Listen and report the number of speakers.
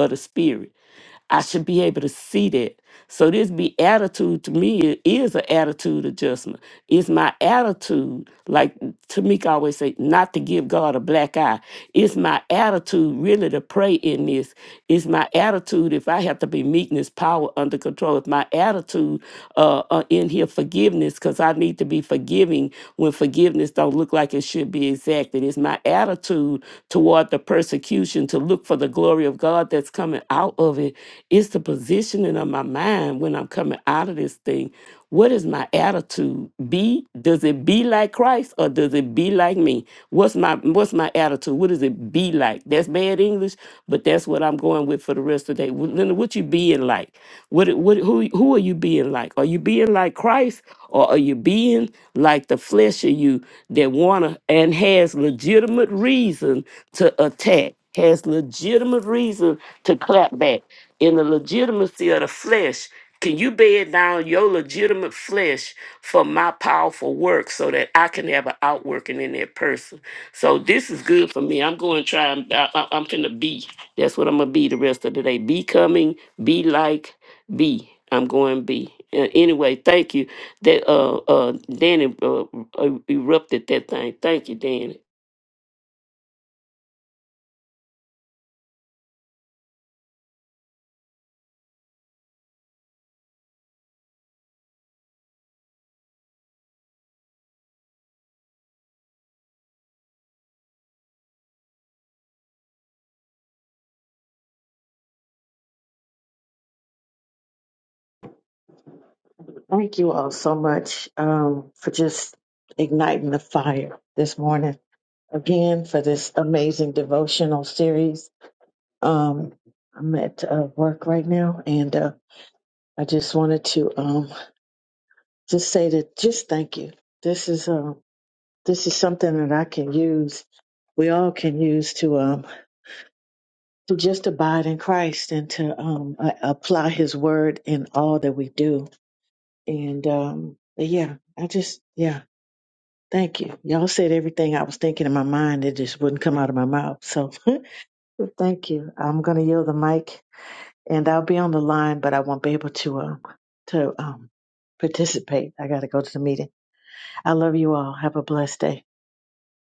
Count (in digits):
2